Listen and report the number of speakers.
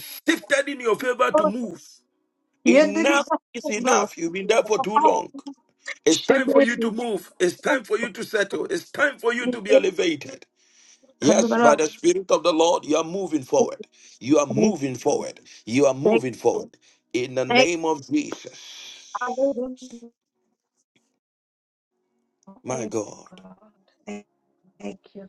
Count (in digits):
2